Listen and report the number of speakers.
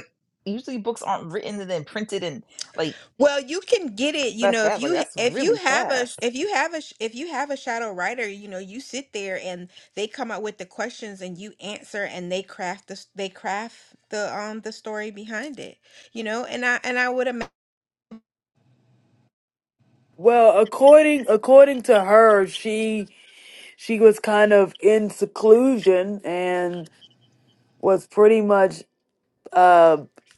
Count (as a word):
three